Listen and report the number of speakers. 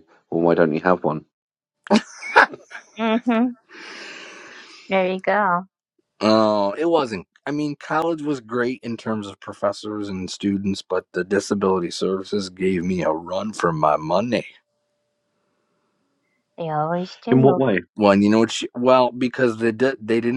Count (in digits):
3